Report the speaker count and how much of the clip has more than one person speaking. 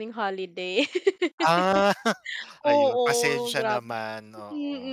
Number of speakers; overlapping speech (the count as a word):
two, about 31%